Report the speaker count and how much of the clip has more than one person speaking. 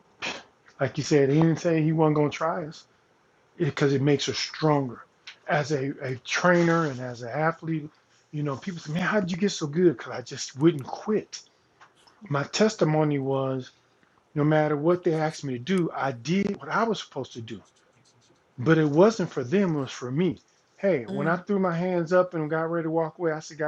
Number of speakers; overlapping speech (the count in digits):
1, no overlap